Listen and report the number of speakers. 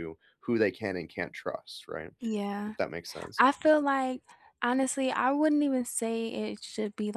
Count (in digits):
2